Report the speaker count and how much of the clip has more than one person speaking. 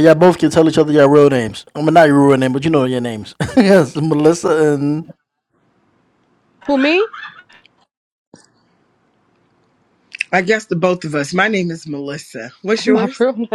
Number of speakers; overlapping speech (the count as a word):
three, about 3%